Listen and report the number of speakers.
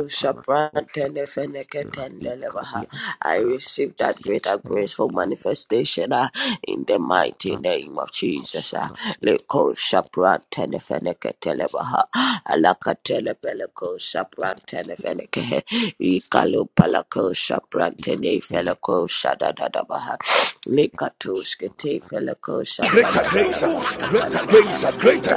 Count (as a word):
three